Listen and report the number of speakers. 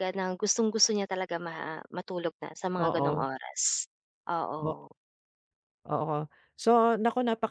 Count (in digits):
2